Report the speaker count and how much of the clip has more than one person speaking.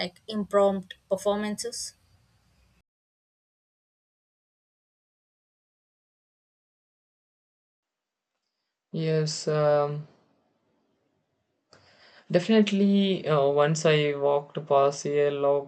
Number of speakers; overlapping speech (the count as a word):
two, no overlap